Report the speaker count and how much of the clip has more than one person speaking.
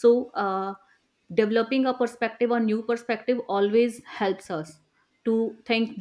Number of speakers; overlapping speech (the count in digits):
1, no overlap